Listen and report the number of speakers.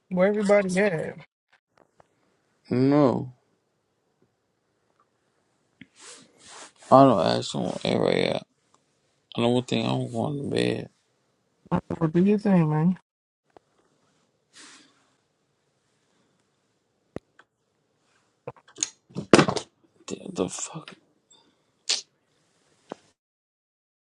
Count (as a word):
two